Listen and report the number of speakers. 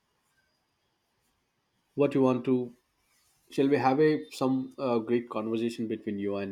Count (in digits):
1